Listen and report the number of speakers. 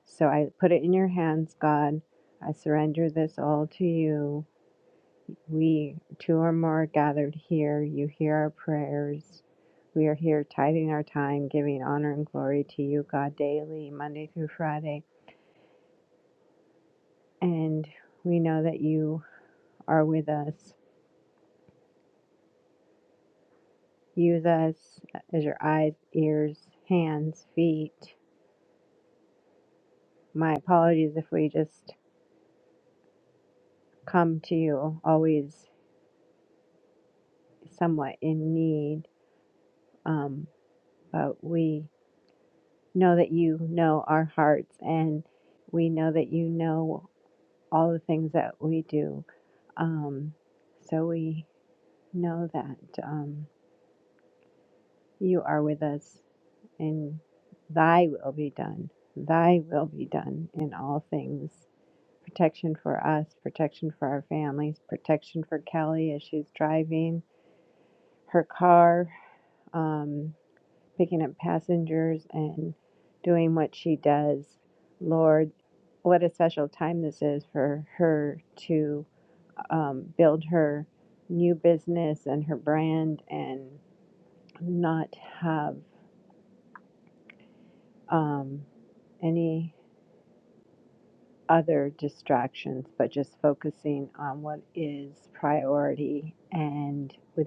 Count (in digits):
1